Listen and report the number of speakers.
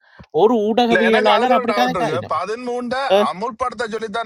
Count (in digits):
2